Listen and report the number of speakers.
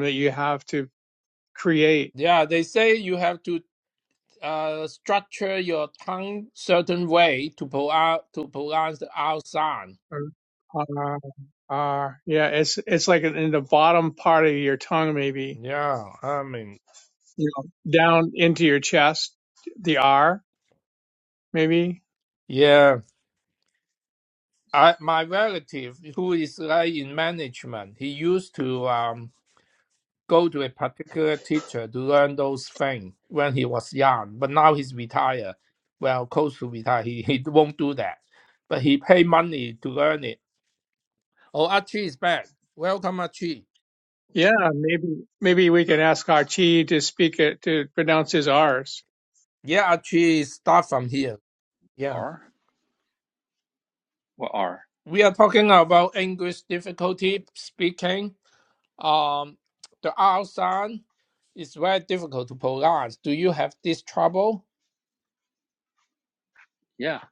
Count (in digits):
3